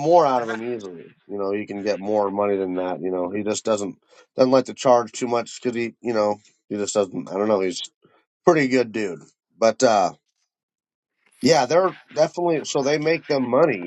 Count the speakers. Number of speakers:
1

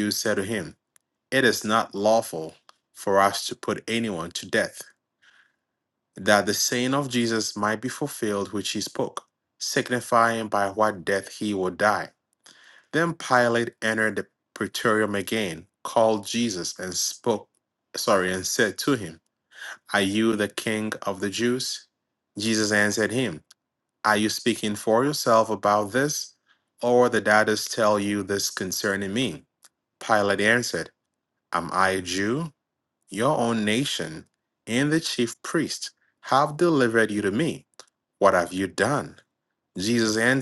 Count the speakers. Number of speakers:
1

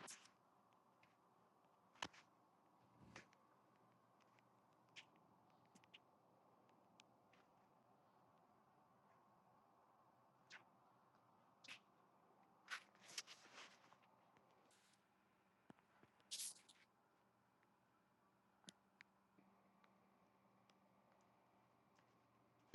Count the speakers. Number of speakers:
0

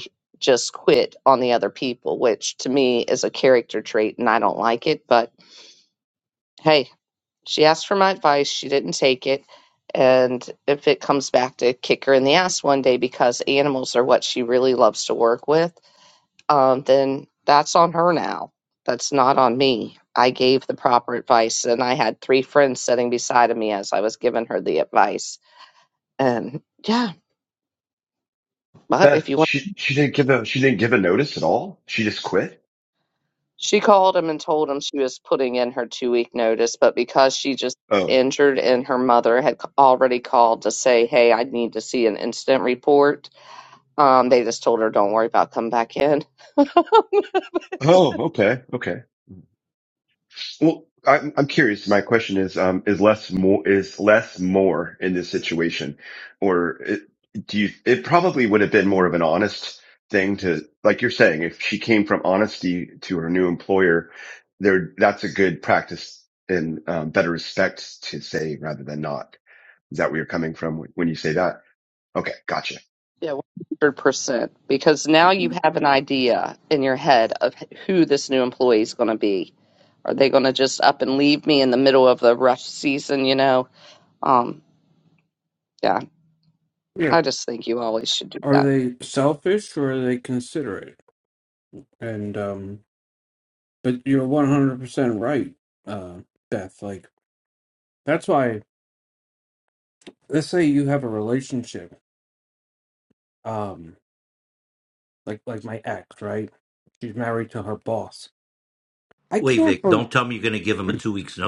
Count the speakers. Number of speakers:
4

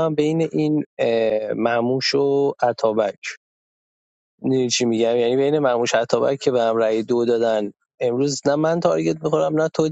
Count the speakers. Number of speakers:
1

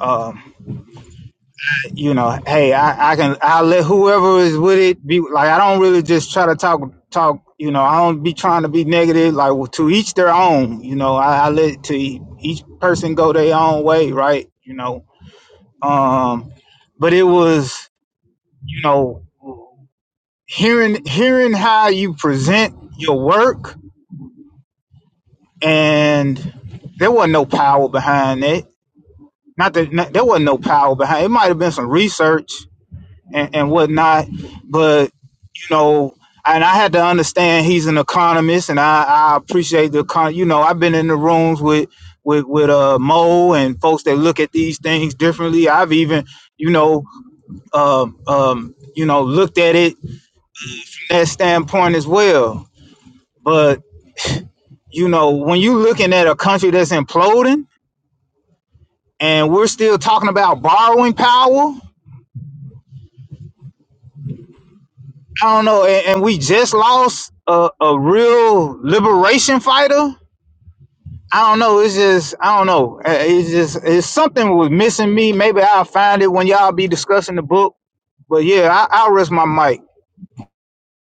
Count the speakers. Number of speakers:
1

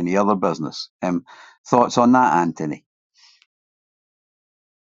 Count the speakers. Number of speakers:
1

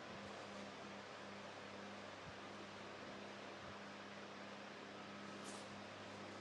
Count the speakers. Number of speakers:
0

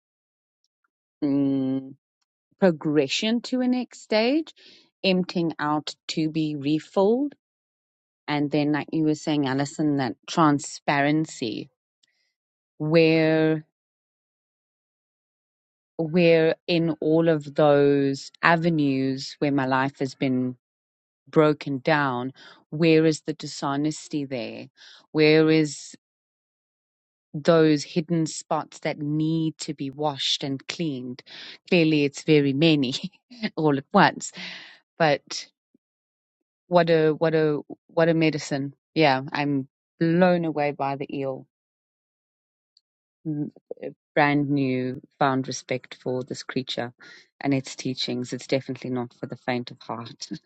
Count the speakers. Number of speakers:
1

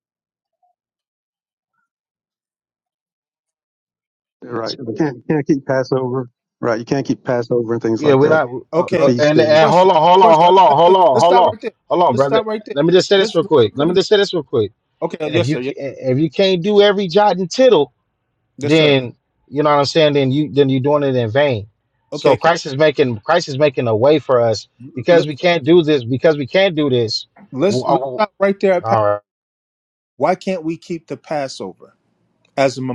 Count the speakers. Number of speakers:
3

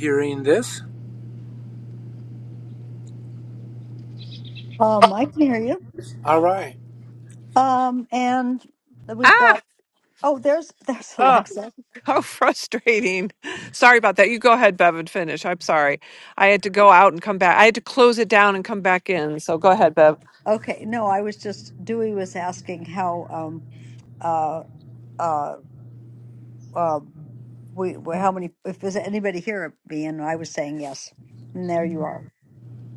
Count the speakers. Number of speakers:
3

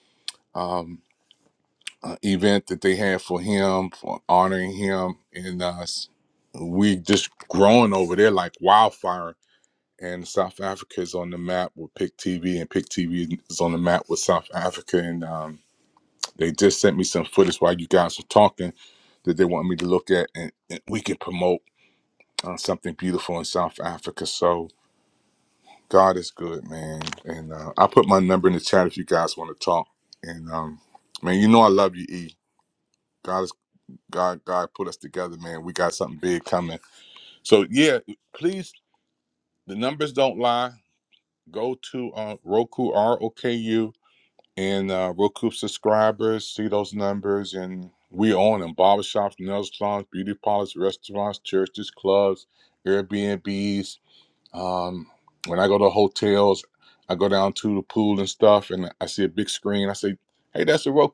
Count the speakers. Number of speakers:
1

